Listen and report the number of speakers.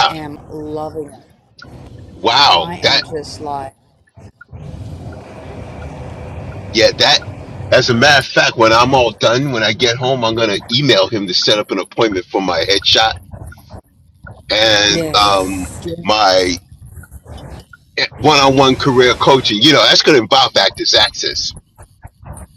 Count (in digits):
2